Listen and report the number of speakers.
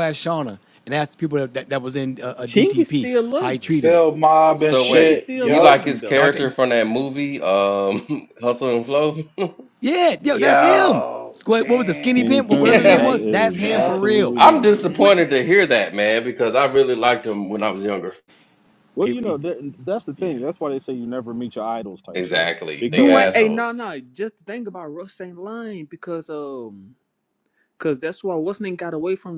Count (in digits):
5